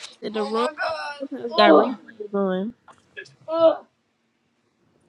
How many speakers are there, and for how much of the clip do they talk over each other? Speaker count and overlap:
two, about 14%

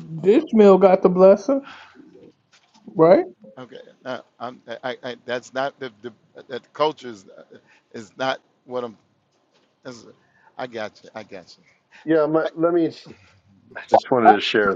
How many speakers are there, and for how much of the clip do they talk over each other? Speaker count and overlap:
three, no overlap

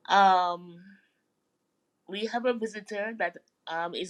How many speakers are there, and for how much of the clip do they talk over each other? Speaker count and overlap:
one, no overlap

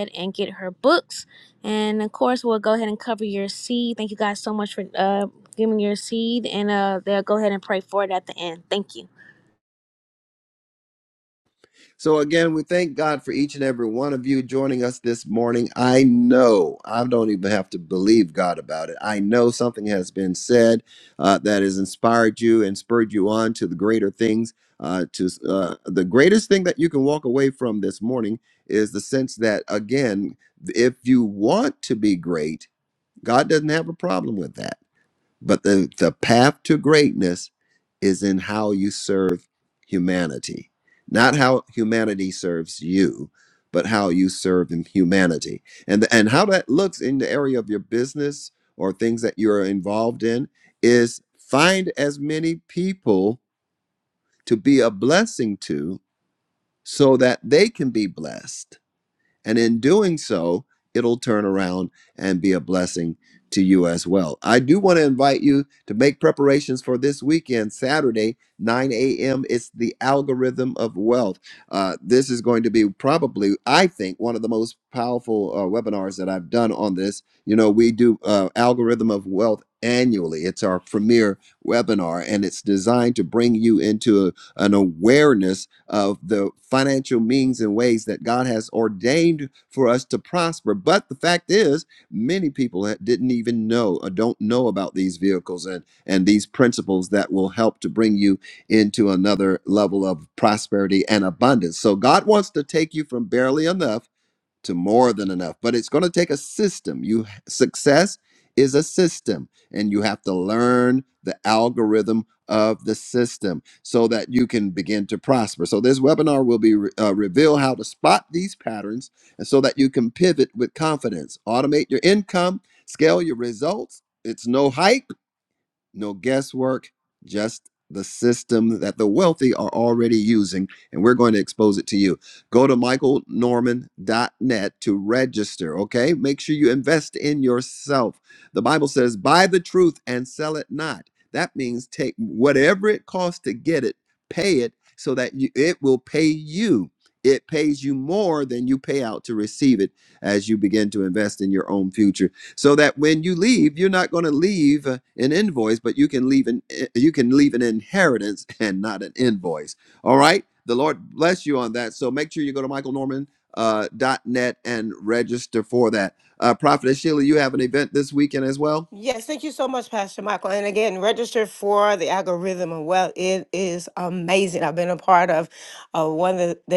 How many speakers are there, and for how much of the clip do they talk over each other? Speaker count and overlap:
three, no overlap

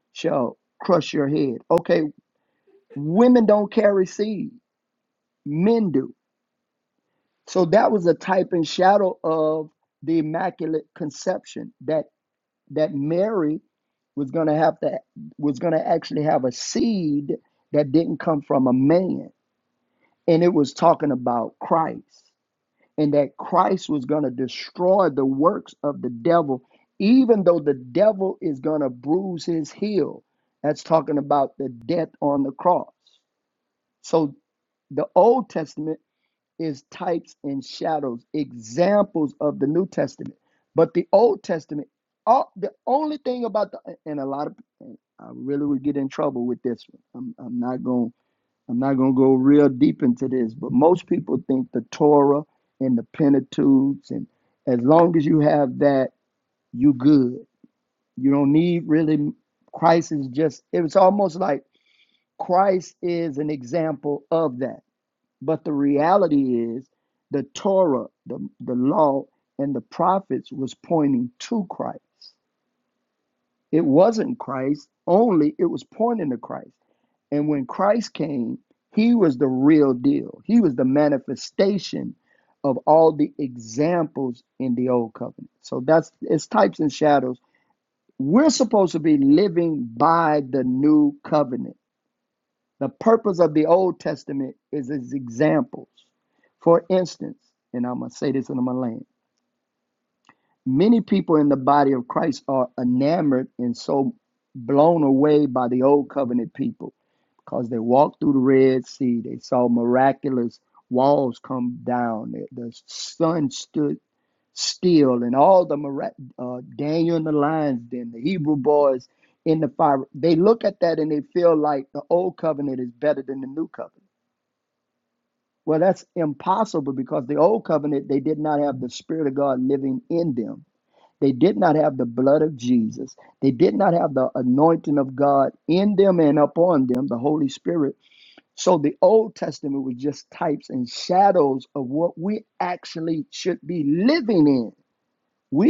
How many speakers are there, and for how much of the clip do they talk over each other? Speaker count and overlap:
one, no overlap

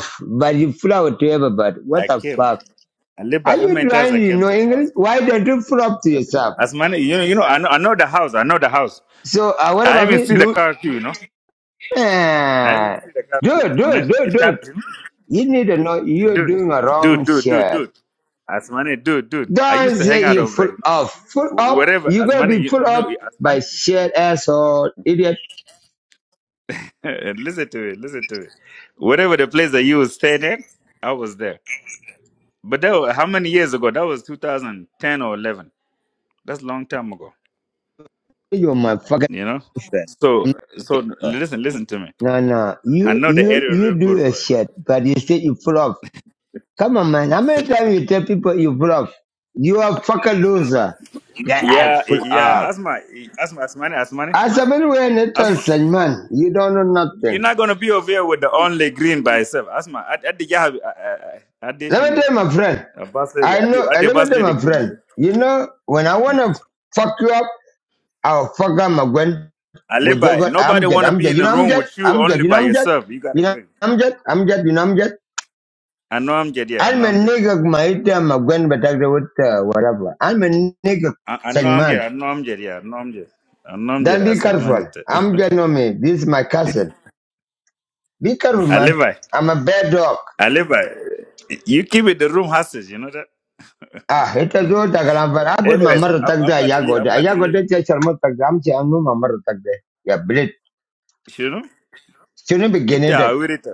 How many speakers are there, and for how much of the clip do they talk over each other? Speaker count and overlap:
two, about 20%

